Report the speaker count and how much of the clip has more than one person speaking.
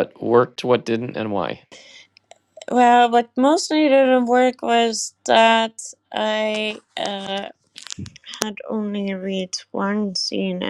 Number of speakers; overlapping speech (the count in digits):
2, no overlap